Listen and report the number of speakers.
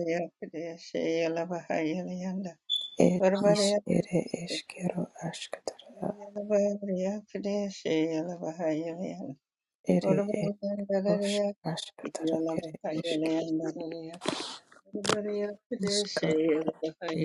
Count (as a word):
two